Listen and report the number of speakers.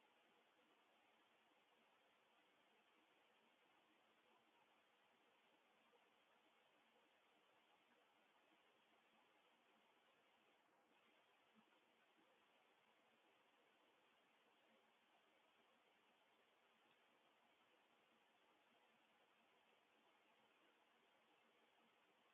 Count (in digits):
0